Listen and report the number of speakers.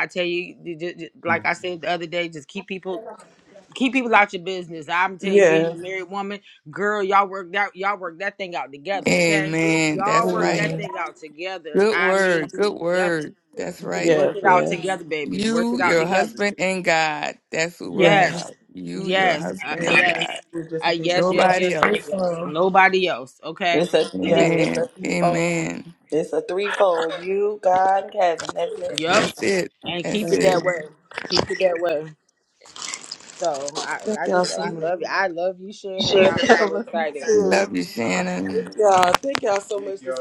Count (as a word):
four